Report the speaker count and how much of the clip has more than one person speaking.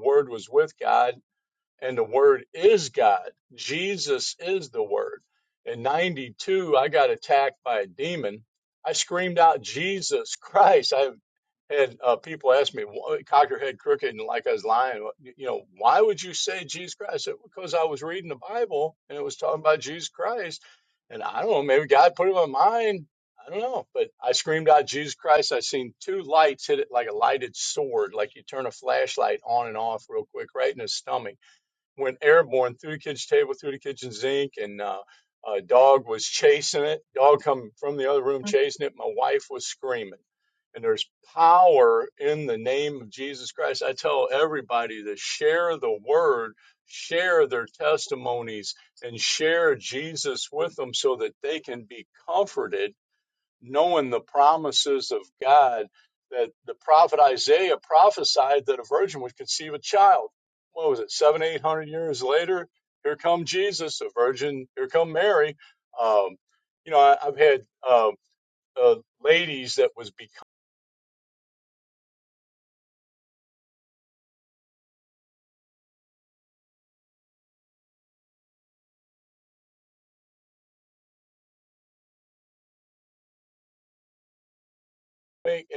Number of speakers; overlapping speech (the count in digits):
1, no overlap